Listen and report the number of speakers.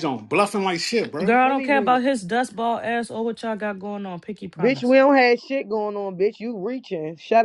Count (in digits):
3